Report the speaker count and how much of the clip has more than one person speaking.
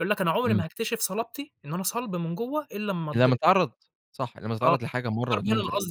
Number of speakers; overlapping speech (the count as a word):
two, about 19%